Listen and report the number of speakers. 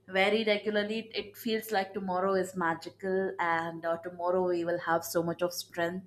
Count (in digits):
1